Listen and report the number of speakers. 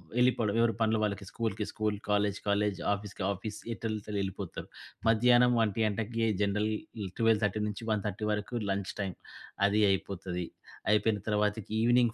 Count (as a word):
one